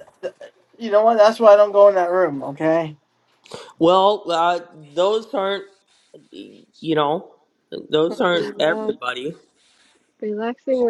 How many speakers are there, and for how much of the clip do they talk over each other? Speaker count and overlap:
three, about 7%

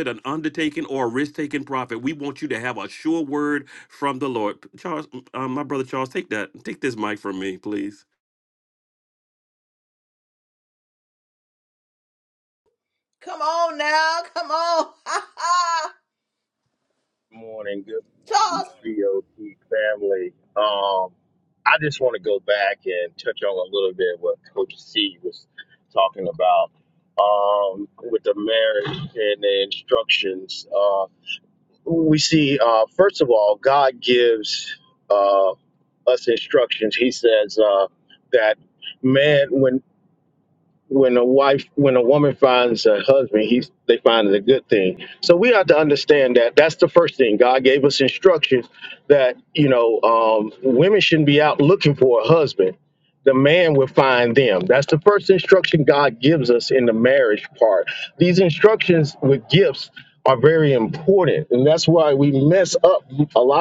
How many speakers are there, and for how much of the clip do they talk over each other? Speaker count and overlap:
three, under 1%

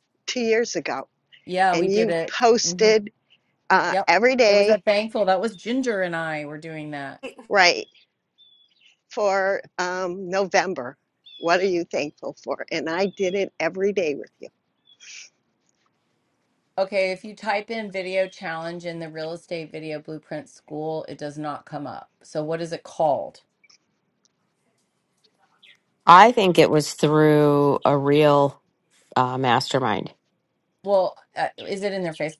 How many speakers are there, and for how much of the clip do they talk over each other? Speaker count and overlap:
three, about 4%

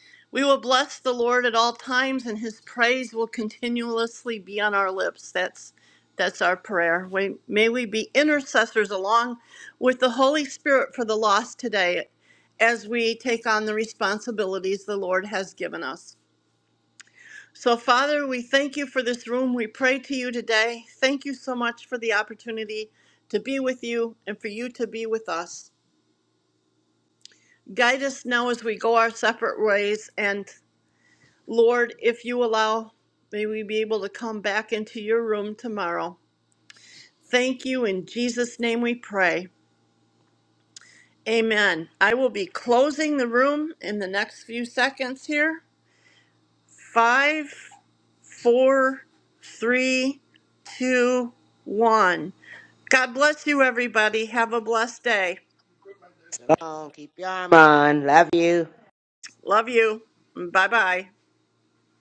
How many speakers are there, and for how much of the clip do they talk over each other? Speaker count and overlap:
two, no overlap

